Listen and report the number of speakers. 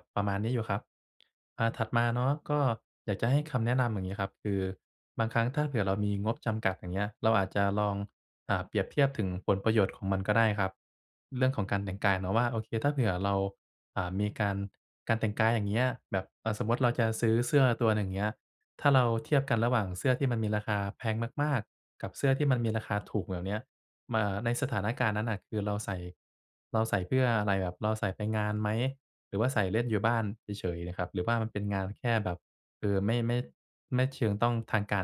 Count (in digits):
1